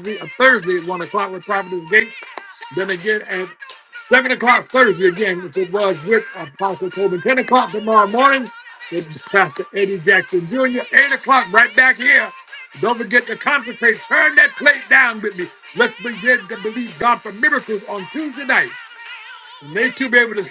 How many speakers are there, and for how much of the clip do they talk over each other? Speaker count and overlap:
1, no overlap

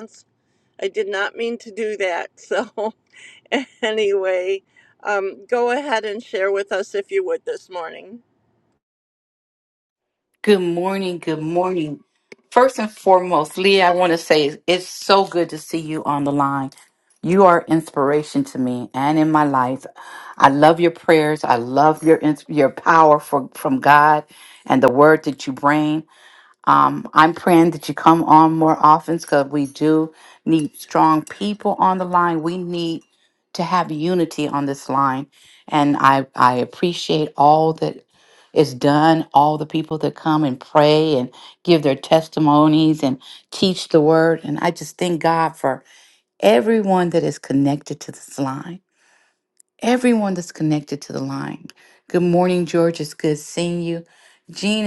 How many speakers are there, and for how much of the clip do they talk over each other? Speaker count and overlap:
2, no overlap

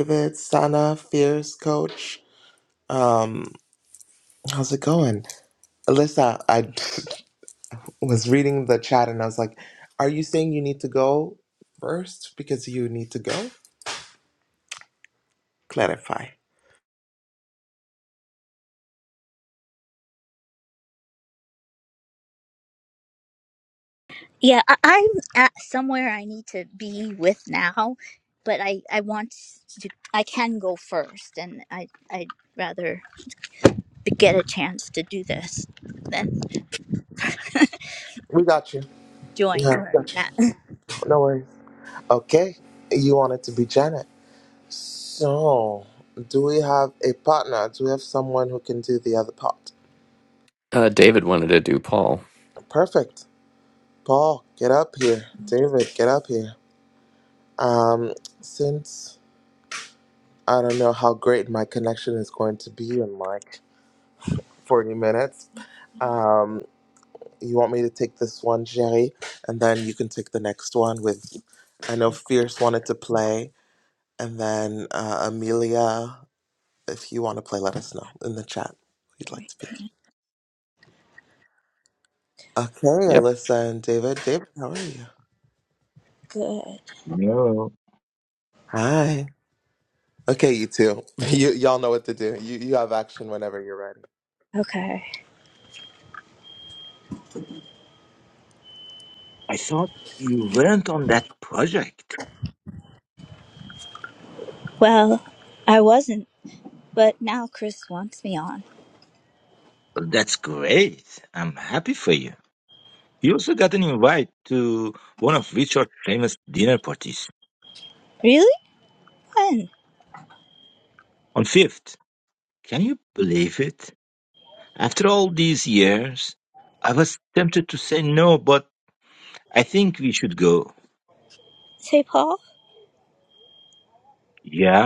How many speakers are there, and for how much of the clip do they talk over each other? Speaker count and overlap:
4, about 1%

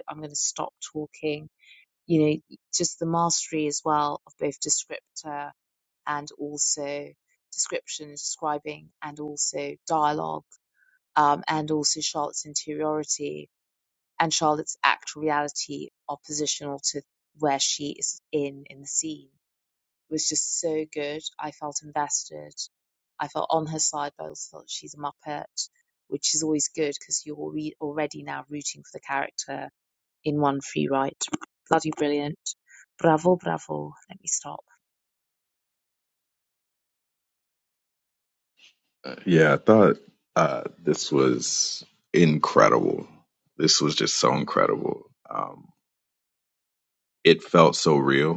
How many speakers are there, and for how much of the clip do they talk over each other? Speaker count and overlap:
2, no overlap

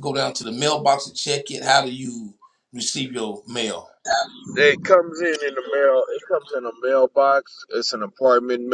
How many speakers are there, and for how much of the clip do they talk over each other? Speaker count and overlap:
2, no overlap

